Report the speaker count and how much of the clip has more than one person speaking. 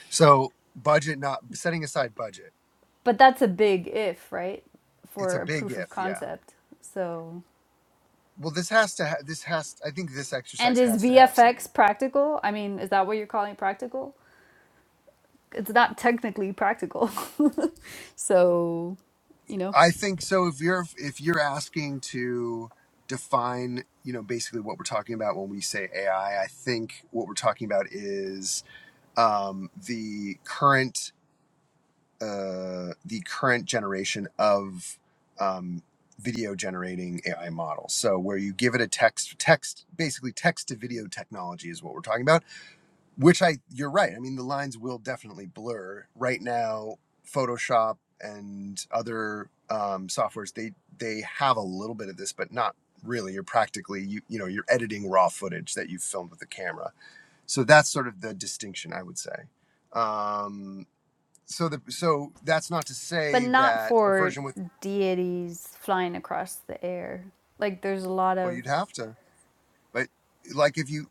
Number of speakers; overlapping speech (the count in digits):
2, about 5%